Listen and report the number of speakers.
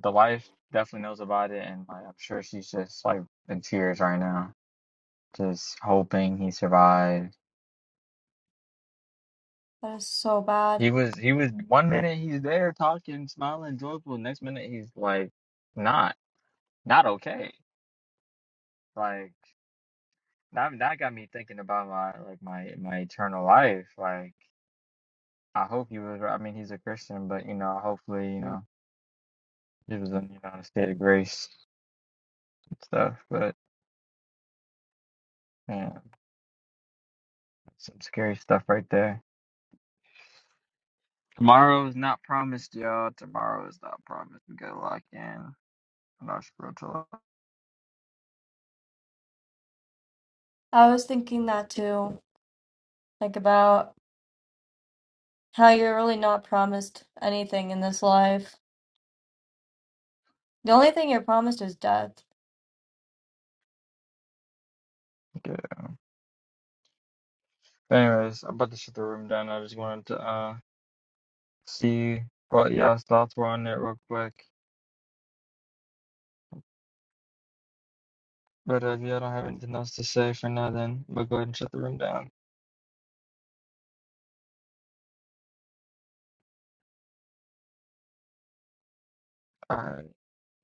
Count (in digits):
2